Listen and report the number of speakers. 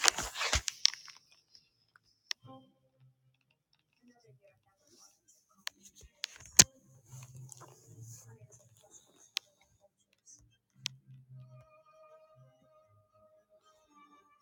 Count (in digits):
0